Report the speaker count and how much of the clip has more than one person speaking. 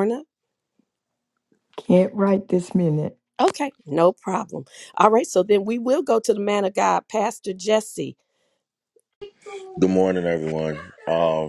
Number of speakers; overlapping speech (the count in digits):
3, no overlap